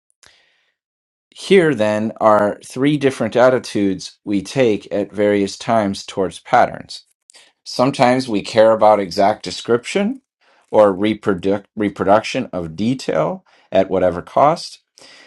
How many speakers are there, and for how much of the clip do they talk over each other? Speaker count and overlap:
1, no overlap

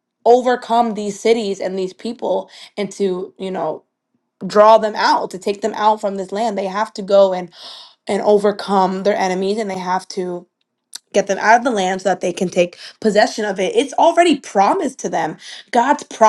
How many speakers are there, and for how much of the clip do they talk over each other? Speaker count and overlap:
1, no overlap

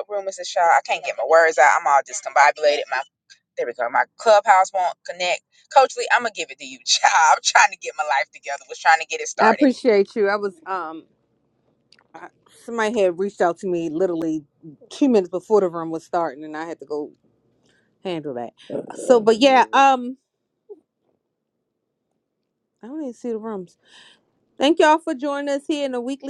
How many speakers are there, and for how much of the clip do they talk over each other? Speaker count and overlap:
2, about 1%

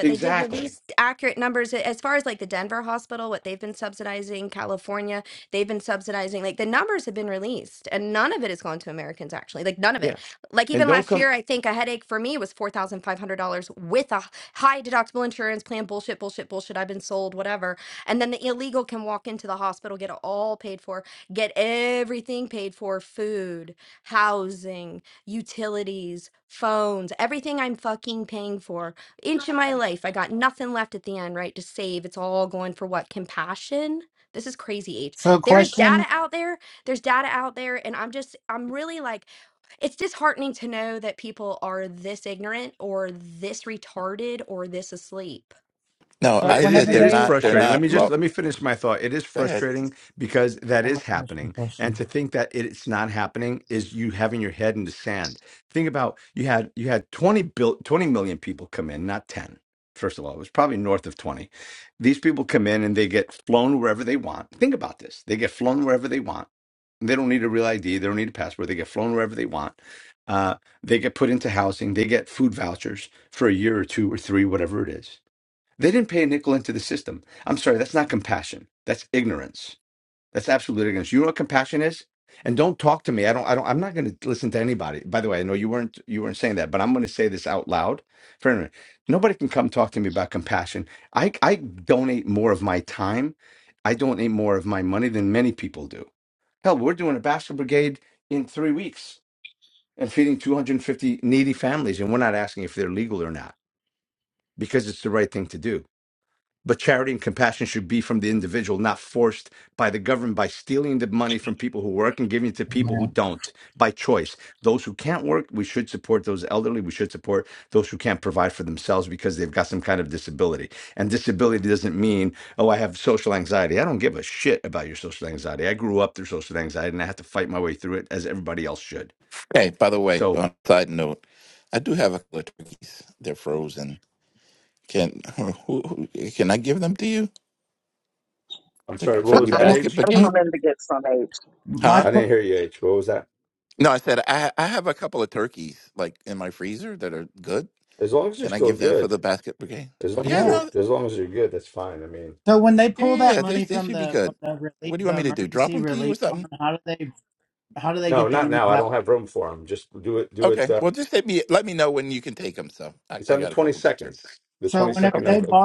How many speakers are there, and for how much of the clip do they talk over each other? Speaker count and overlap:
5, about 9%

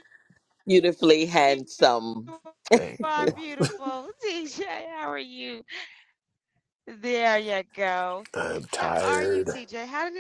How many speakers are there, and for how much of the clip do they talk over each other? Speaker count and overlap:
3, about 16%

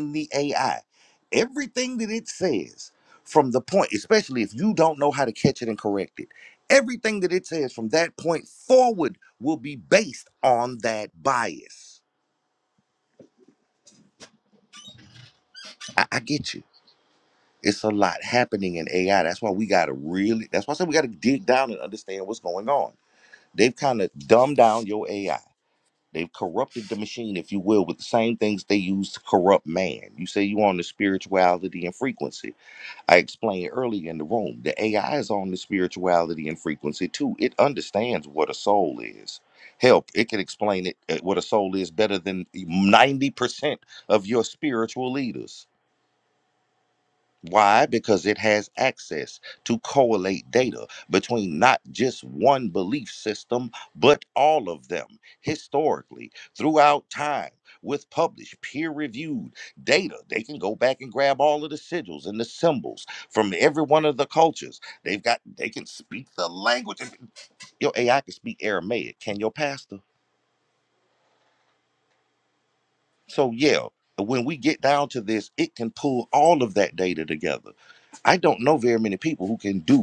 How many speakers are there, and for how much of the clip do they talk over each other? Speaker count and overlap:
1, no overlap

